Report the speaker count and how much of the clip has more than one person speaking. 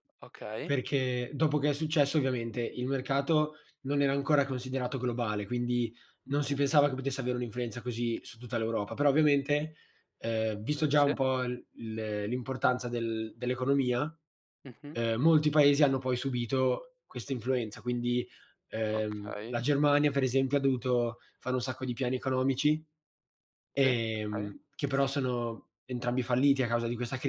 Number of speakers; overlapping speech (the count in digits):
2, about 7%